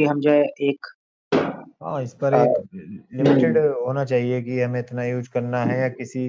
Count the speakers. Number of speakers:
2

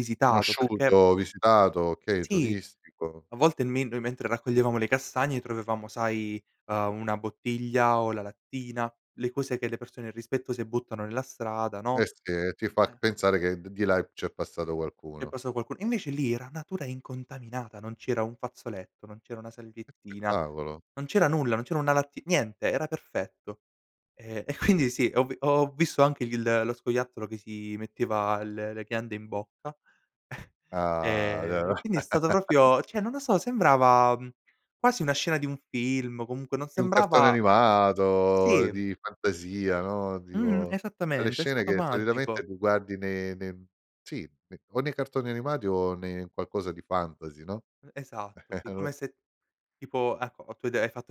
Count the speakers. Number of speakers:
2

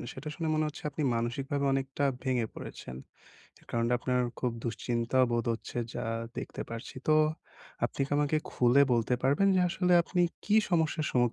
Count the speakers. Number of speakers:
1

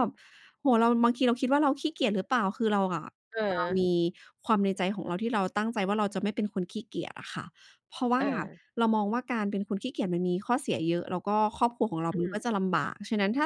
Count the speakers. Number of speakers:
2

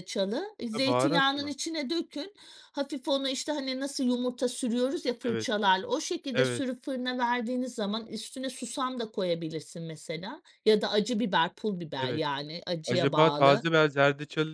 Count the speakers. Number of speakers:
2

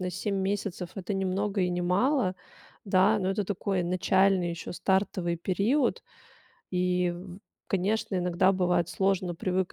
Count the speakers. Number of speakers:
1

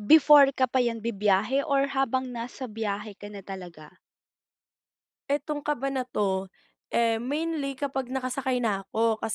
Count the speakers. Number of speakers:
2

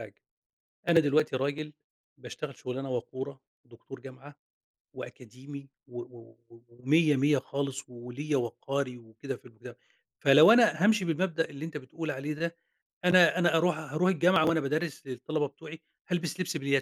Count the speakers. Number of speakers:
1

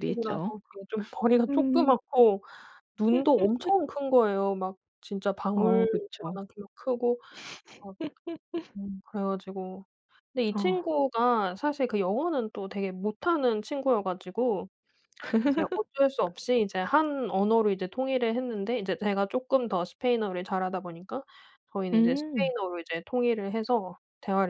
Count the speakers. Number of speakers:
2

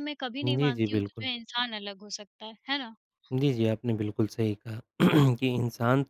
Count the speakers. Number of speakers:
2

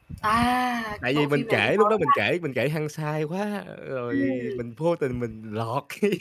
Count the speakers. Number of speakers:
2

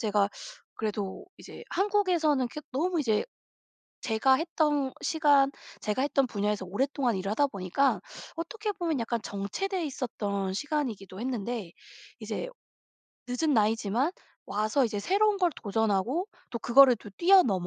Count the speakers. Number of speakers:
1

